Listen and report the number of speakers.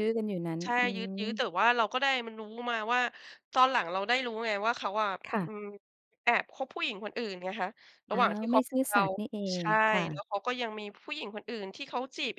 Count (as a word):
two